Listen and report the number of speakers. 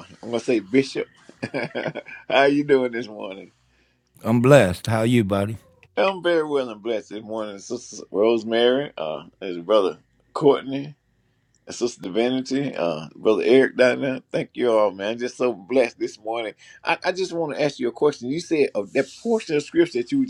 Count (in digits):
2